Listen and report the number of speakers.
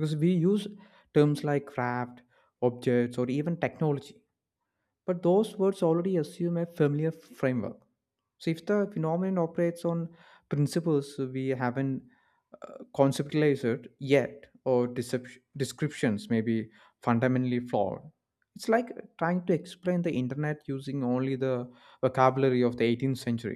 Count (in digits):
1